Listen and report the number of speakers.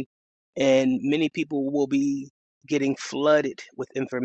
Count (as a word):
one